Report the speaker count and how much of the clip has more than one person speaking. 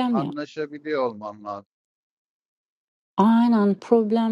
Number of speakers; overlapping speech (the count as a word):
two, about 5%